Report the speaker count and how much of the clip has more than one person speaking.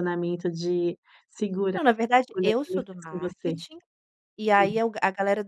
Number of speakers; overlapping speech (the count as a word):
two, about 36%